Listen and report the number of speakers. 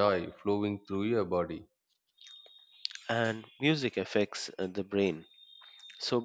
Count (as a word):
two